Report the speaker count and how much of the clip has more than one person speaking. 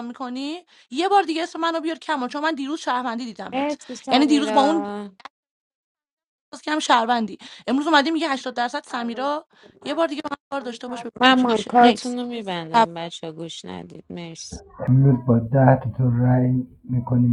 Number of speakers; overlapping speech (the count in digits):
3, about 11%